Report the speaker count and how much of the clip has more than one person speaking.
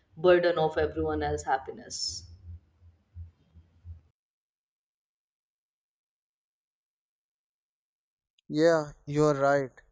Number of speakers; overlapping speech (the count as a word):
two, no overlap